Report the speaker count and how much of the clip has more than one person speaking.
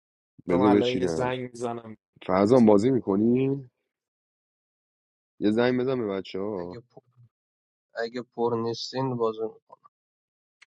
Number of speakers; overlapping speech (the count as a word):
three, about 9%